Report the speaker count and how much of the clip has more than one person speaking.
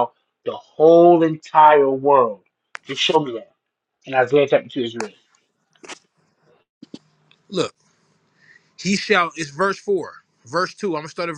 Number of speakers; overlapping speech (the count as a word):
two, no overlap